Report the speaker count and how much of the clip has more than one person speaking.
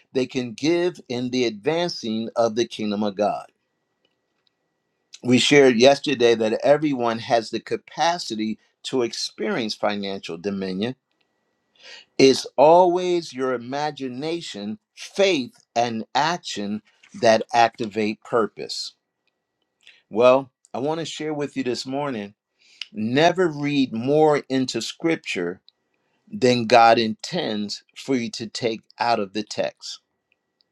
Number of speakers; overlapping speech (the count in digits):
1, no overlap